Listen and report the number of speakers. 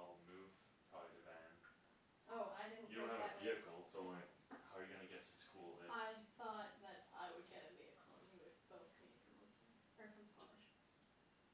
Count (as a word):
two